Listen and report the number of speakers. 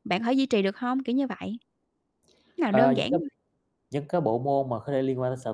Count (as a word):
two